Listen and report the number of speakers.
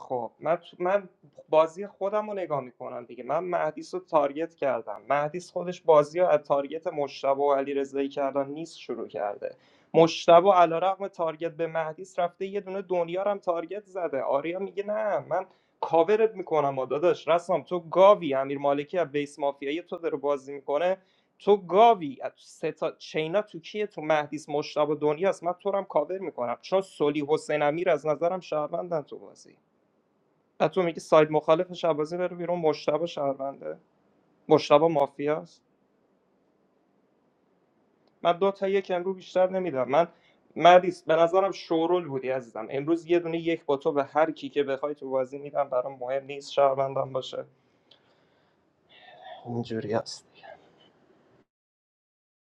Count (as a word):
one